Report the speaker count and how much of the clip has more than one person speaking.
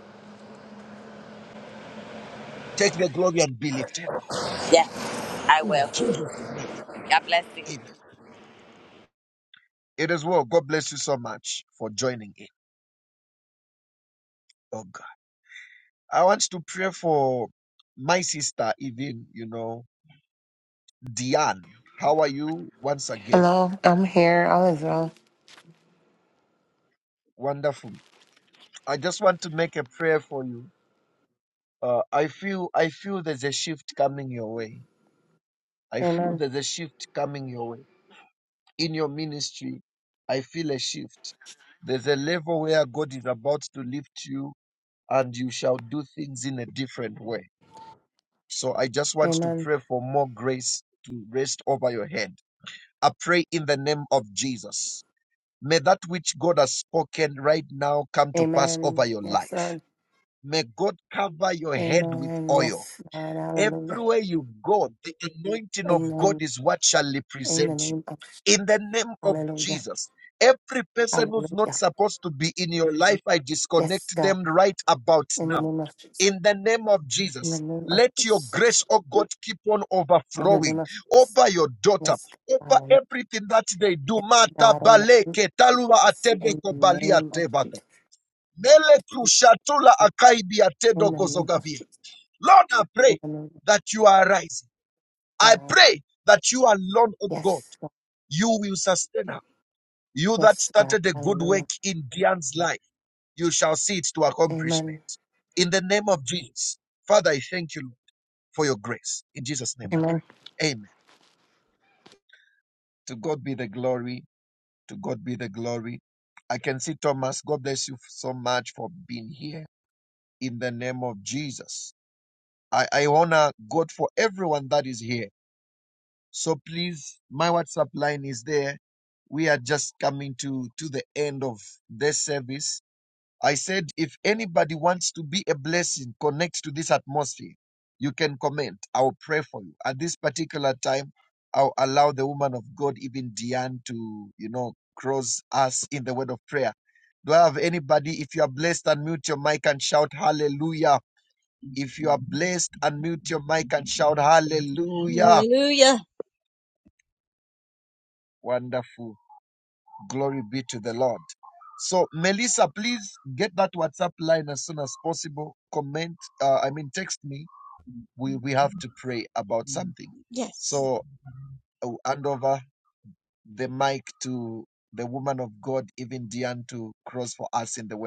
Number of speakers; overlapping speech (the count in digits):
4, about 9%